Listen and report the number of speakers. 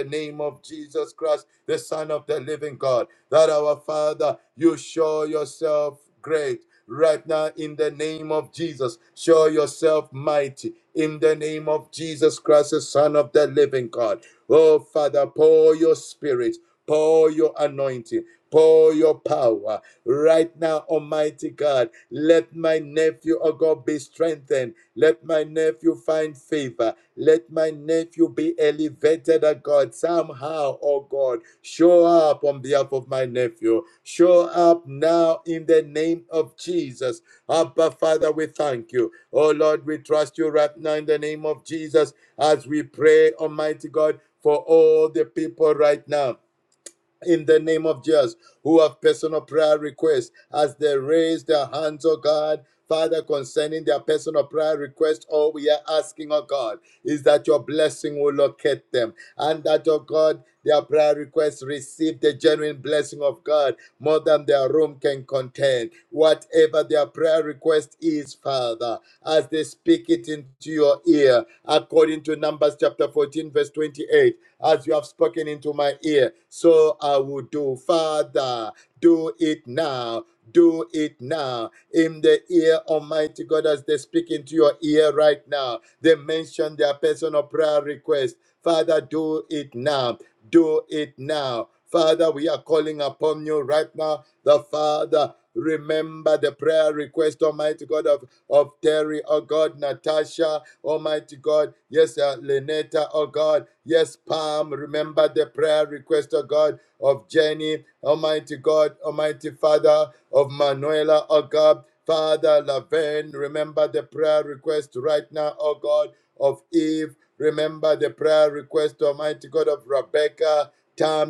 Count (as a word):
one